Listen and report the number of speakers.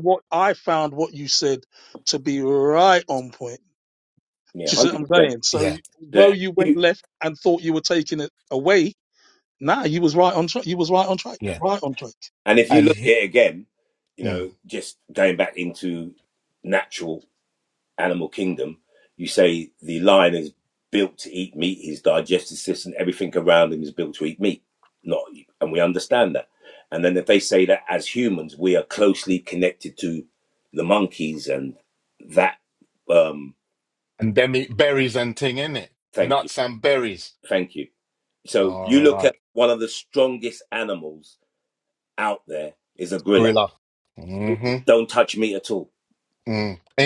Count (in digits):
3